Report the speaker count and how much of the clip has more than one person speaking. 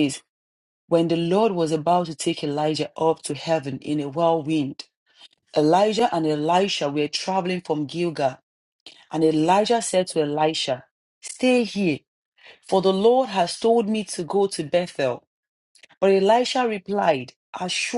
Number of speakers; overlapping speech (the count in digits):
1, no overlap